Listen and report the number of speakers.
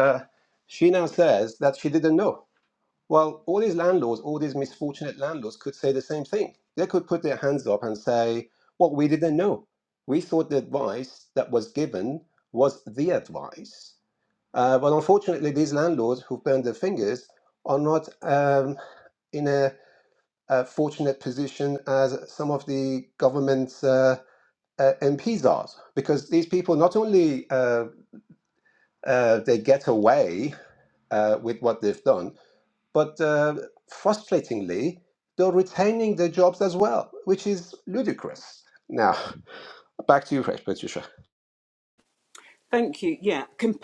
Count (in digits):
2